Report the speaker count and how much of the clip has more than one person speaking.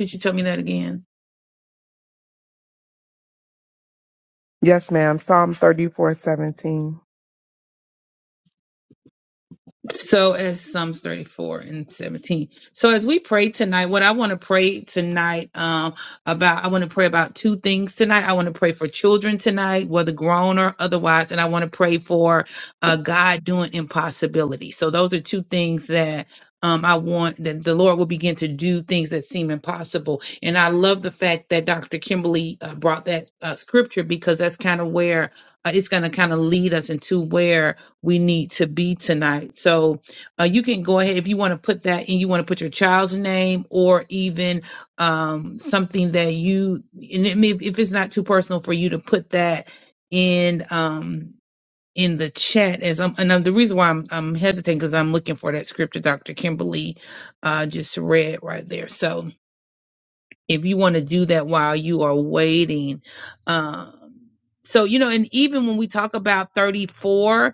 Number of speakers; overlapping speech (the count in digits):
2, no overlap